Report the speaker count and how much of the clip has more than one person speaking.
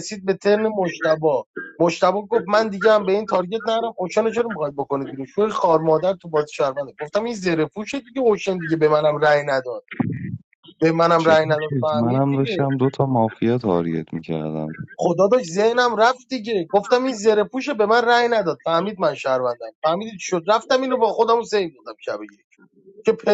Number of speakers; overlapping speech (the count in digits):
2, about 6%